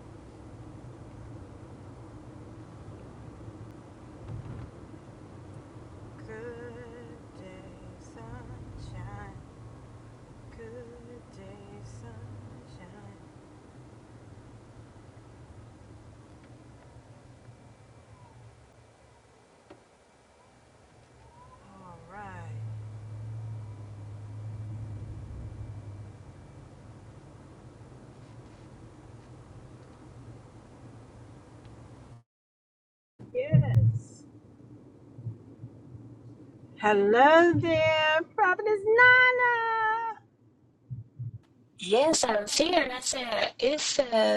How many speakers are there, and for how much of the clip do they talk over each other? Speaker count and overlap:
2, no overlap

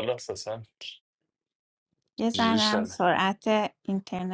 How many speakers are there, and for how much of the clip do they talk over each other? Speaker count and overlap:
2, about 14%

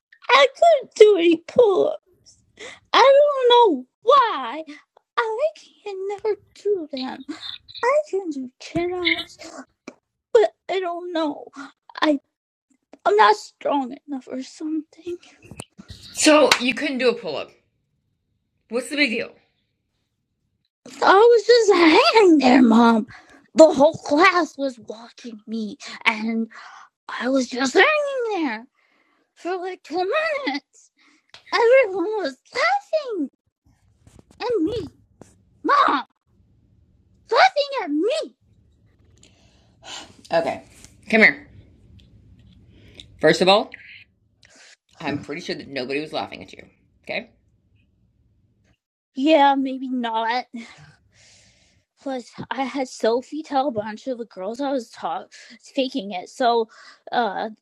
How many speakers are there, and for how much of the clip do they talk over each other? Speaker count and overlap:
2, no overlap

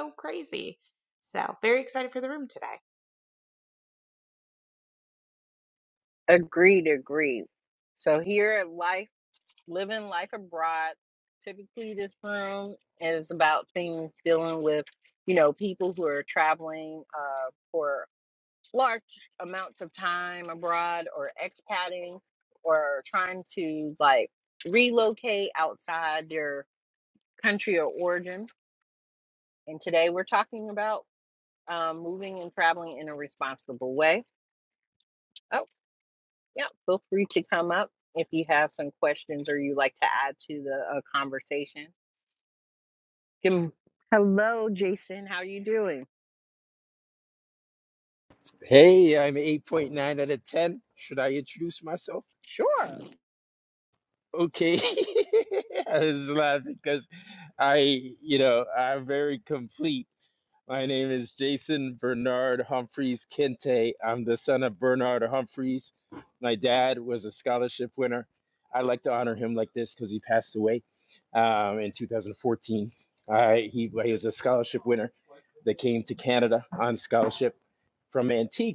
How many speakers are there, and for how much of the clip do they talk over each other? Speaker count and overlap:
3, no overlap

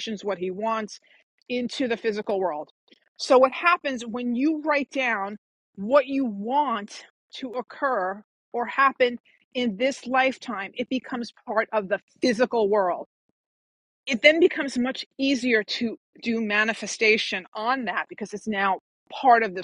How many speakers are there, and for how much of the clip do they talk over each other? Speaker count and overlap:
1, no overlap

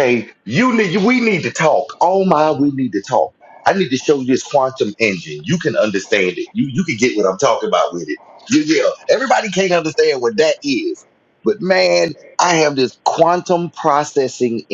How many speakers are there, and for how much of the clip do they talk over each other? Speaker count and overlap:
1, no overlap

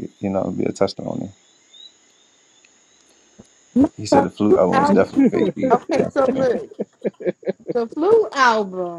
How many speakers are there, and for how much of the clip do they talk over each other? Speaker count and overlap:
2, about 28%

